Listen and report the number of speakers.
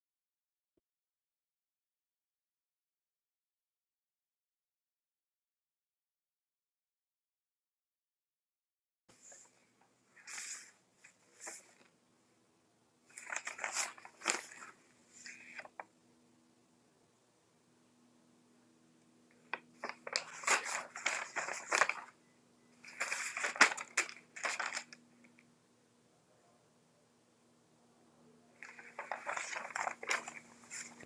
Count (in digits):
0